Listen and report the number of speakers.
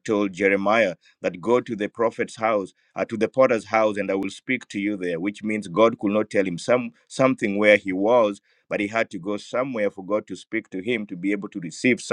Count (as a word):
one